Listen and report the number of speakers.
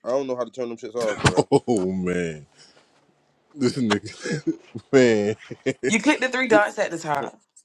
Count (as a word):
three